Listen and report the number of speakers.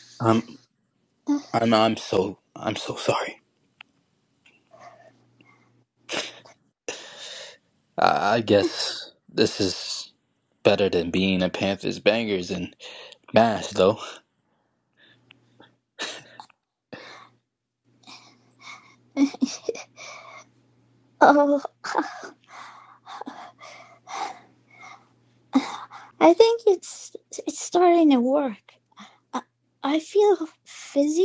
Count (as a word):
two